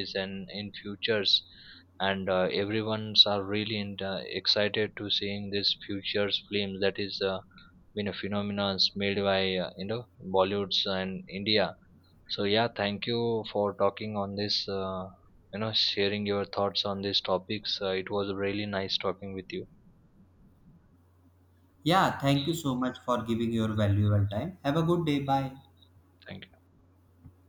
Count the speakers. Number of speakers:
2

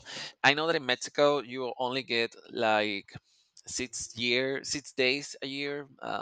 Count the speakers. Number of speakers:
1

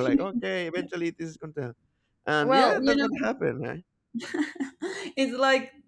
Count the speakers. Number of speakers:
2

